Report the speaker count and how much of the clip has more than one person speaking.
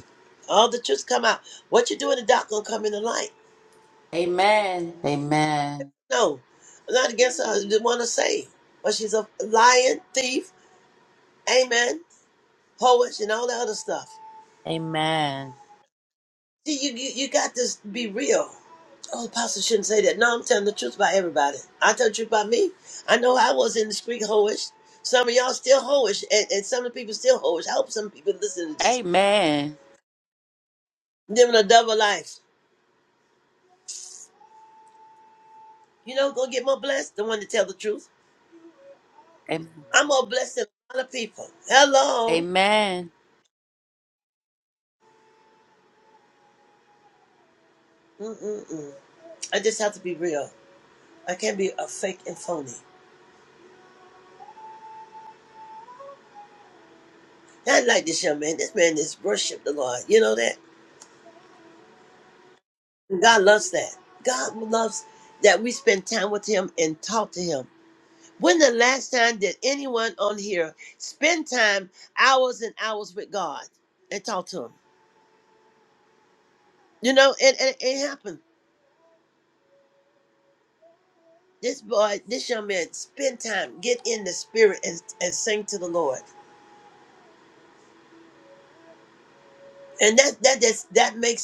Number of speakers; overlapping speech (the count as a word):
two, under 1%